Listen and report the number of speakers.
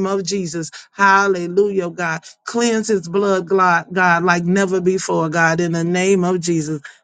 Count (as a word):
one